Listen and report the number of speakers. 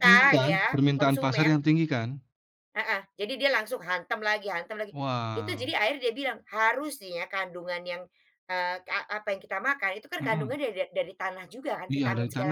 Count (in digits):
2